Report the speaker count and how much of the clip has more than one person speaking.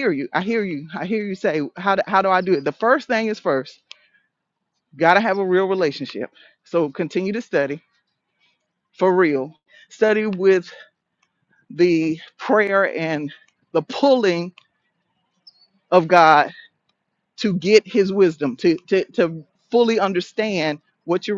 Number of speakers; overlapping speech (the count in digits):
1, no overlap